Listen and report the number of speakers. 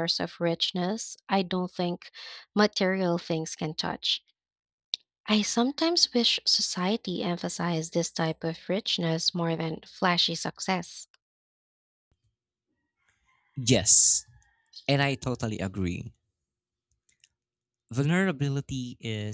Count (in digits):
2